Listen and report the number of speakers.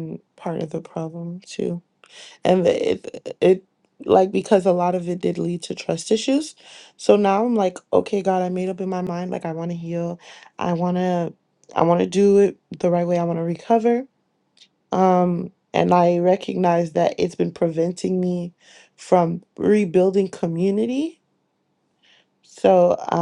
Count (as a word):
one